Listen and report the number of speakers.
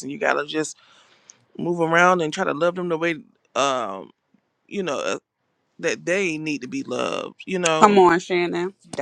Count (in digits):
2